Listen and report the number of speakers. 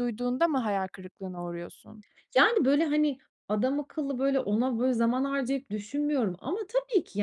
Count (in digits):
2